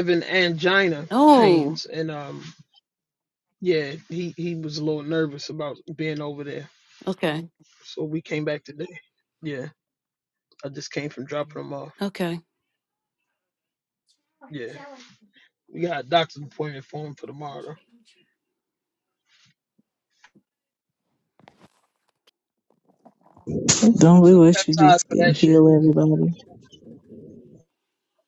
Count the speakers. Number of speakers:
three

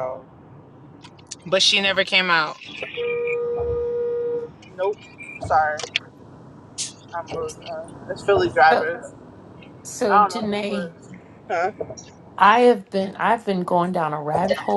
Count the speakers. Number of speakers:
three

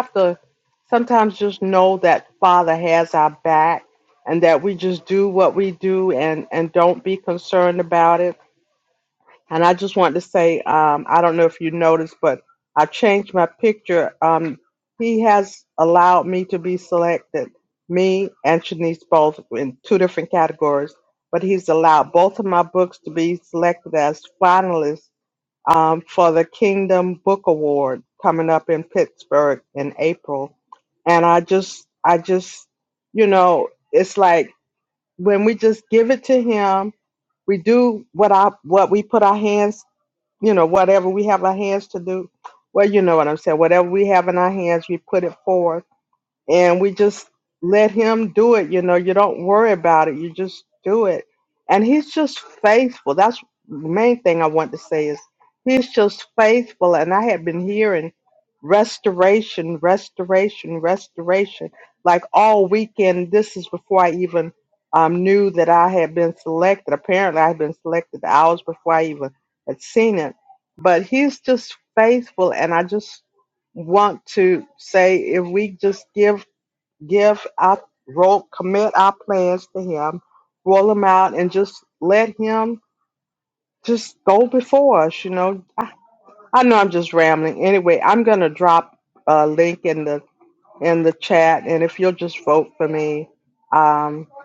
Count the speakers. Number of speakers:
one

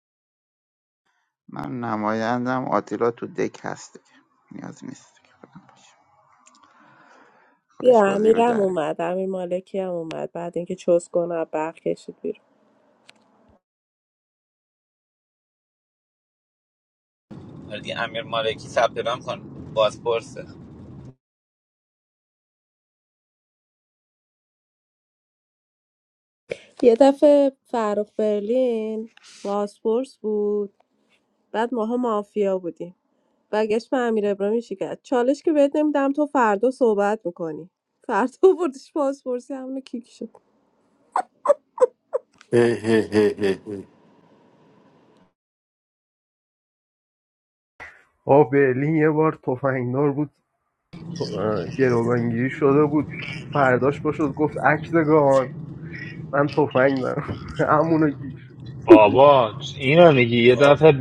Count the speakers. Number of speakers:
six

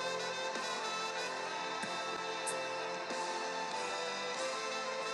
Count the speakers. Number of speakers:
zero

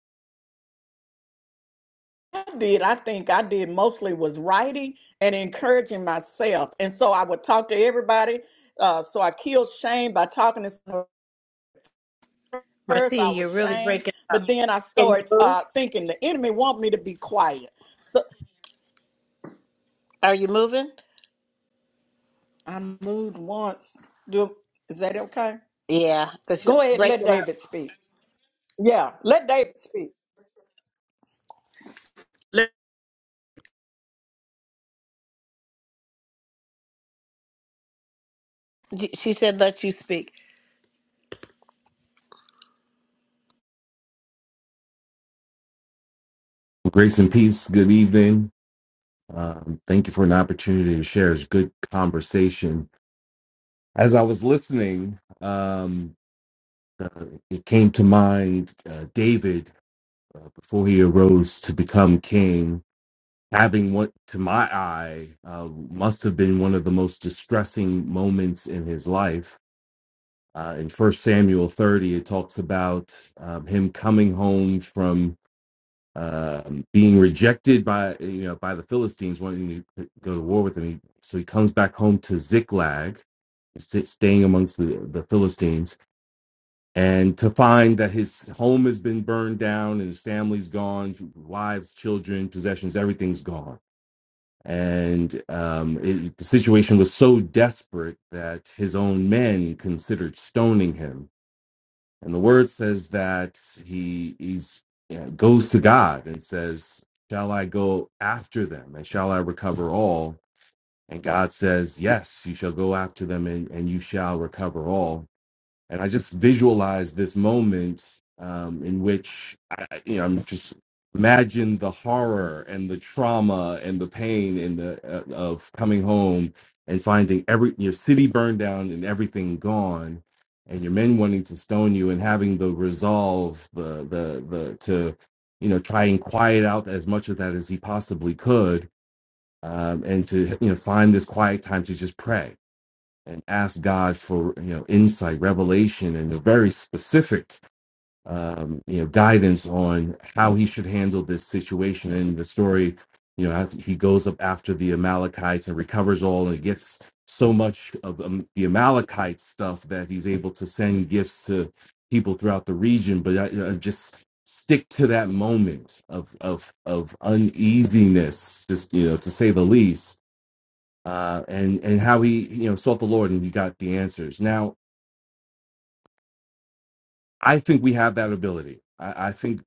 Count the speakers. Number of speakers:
three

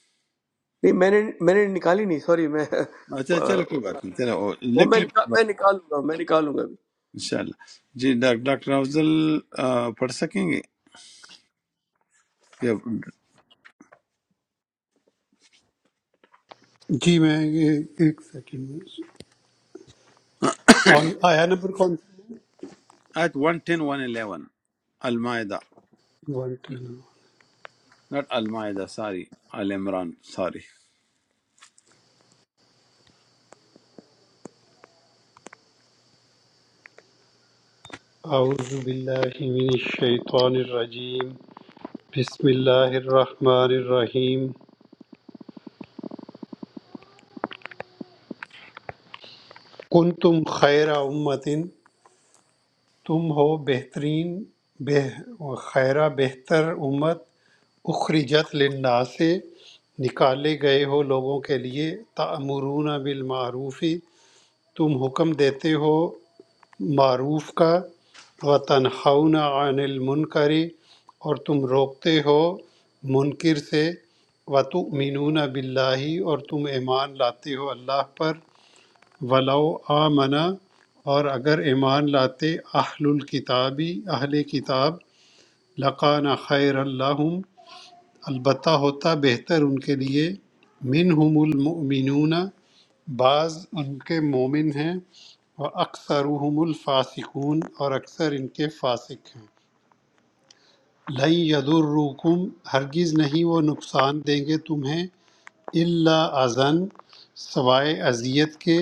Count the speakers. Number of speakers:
three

